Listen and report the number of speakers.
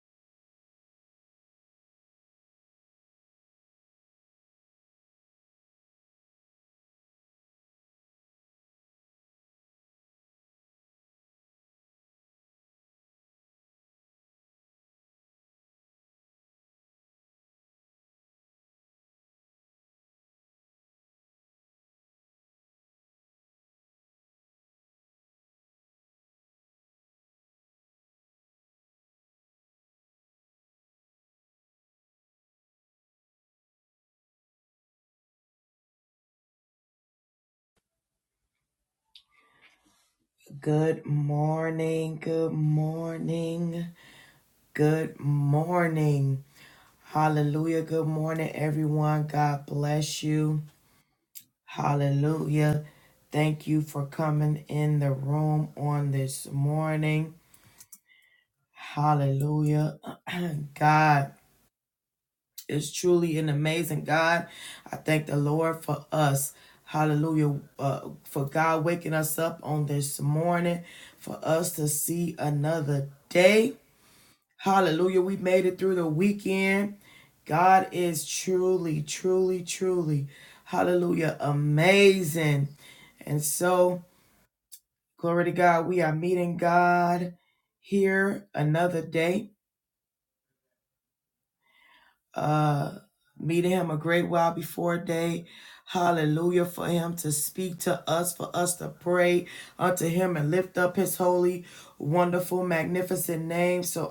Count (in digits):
1